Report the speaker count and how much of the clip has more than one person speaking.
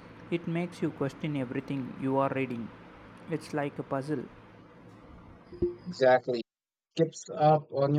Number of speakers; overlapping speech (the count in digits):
2, no overlap